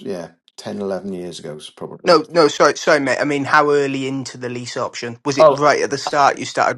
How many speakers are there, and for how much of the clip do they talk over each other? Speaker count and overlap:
2, about 5%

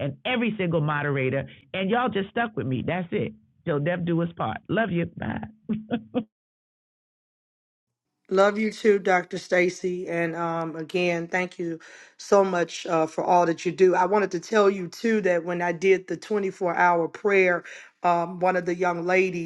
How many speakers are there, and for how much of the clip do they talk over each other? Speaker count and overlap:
2, no overlap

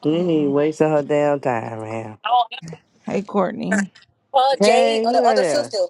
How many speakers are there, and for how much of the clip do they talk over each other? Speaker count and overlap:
3, about 30%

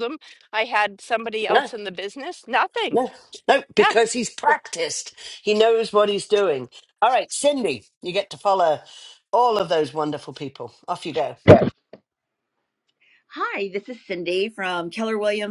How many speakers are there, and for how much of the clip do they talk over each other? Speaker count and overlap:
3, about 3%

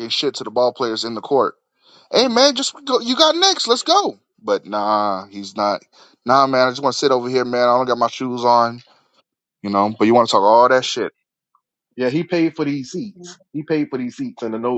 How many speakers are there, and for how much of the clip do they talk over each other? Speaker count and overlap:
2, no overlap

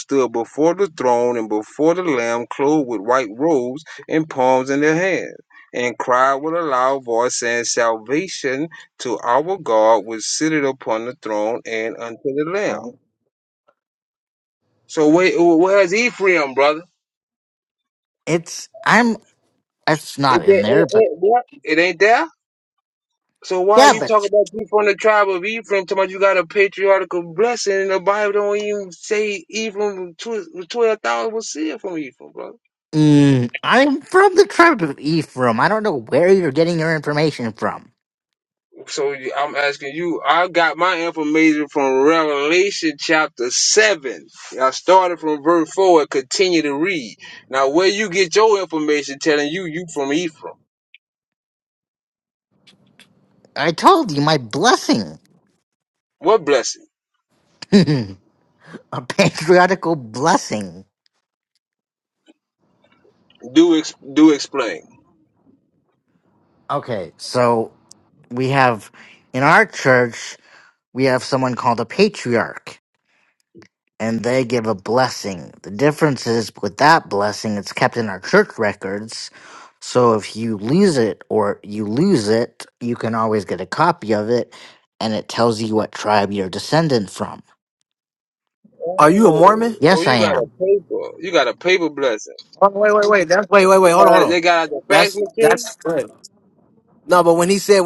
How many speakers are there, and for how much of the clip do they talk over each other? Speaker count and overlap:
3, about 3%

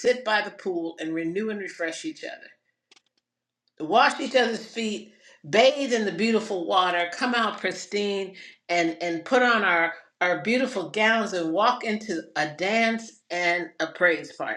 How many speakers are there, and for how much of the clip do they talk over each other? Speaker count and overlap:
1, no overlap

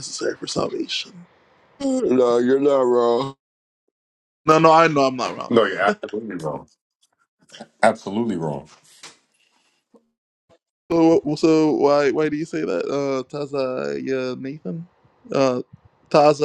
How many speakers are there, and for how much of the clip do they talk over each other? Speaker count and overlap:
3, no overlap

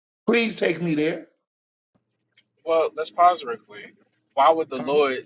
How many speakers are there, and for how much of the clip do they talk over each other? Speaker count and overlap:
2, about 4%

